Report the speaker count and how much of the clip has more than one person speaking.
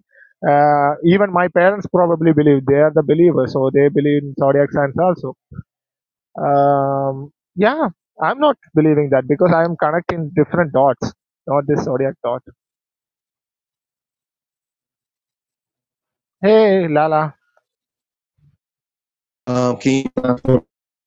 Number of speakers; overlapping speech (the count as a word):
two, no overlap